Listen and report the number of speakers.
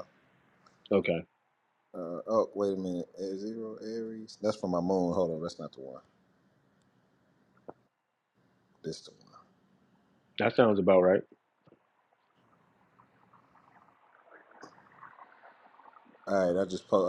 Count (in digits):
2